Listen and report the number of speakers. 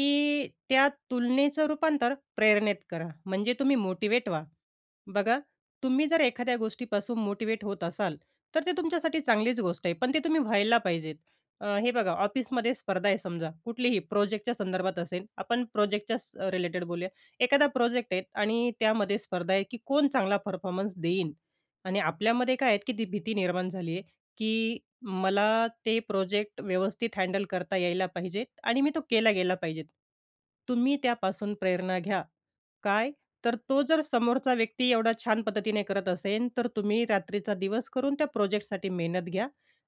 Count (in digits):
1